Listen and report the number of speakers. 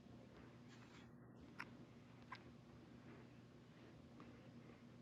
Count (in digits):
0